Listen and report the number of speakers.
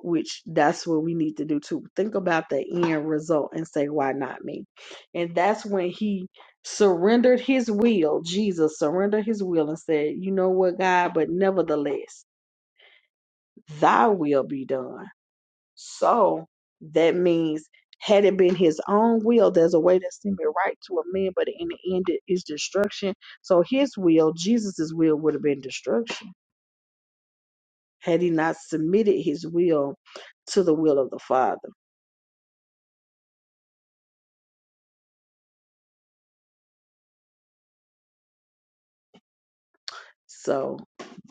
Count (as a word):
one